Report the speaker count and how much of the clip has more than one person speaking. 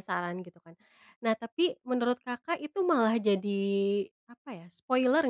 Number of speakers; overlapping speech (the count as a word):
one, no overlap